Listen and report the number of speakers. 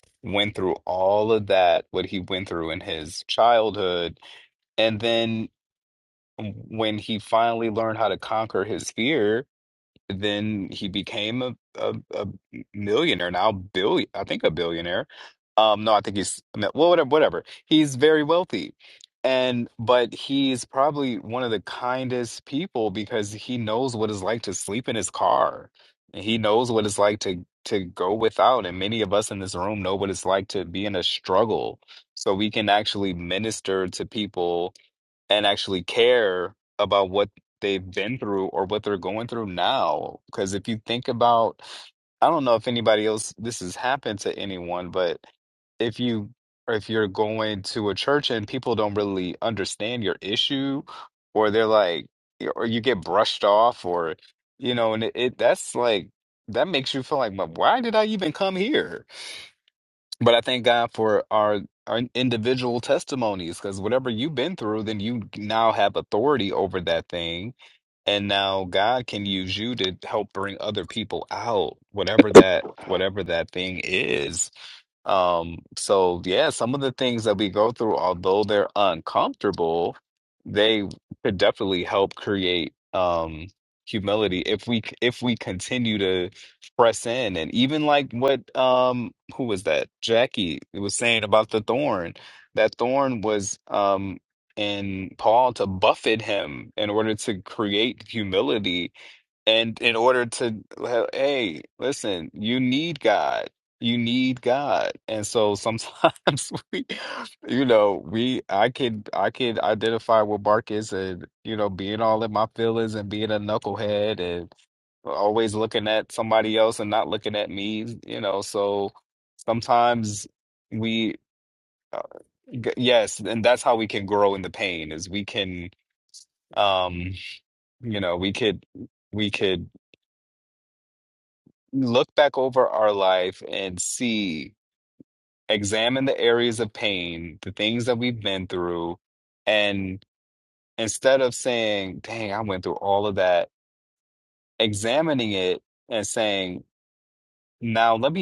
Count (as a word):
one